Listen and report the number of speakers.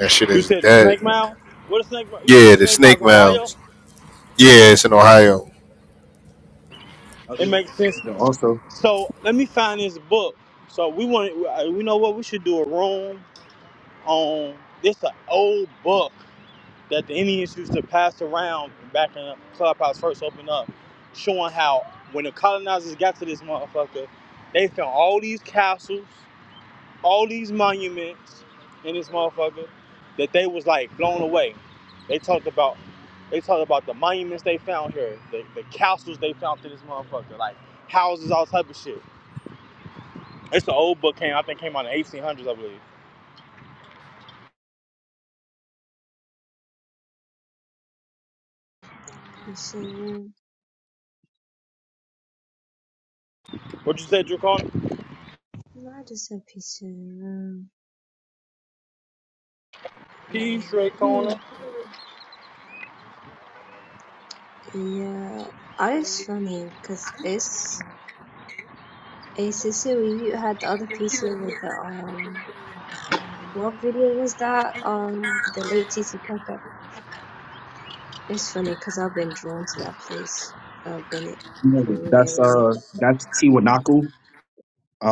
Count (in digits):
4